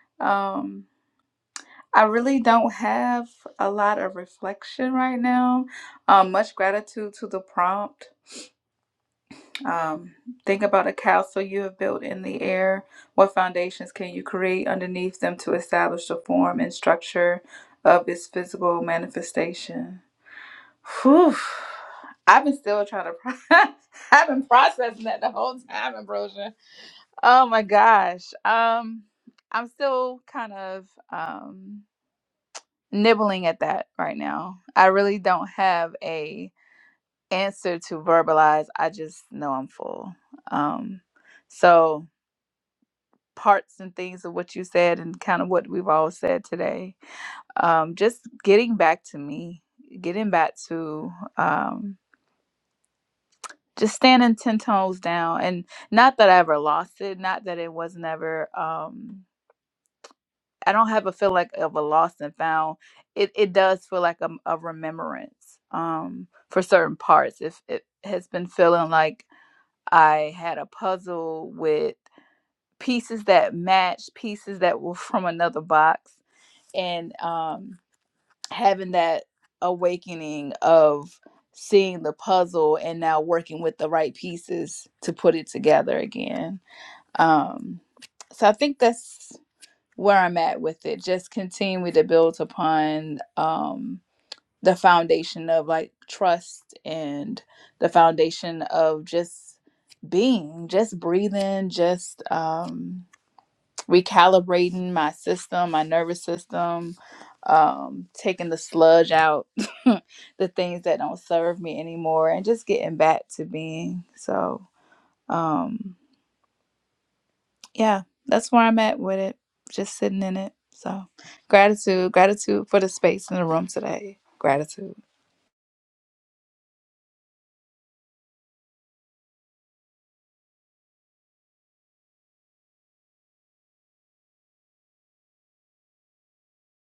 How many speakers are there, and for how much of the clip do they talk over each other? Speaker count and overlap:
1, no overlap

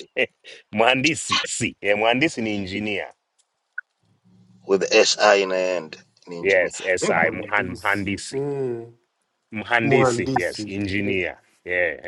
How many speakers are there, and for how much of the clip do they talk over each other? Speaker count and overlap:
3, about 27%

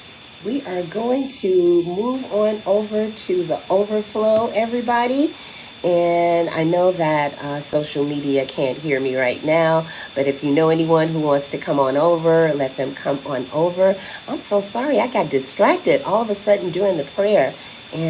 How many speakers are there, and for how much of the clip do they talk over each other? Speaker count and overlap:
1, no overlap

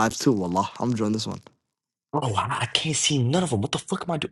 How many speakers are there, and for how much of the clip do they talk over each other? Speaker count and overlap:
2, no overlap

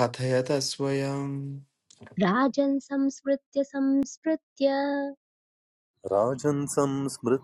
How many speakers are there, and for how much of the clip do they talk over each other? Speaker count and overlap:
3, no overlap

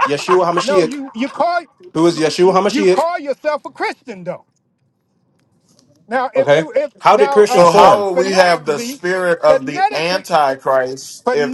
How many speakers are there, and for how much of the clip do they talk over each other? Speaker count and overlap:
3, about 34%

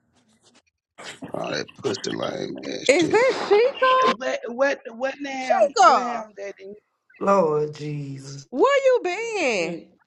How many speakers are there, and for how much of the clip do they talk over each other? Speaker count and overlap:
4, about 14%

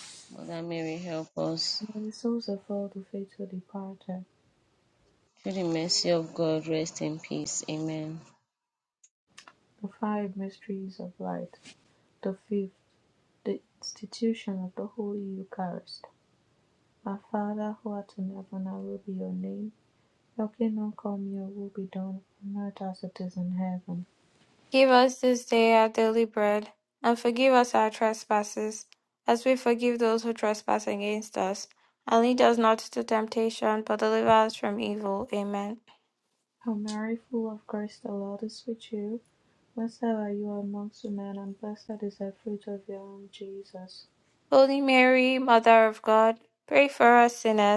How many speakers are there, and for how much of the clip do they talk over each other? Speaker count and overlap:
3, no overlap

